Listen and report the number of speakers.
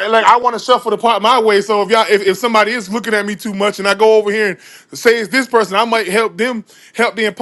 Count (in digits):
1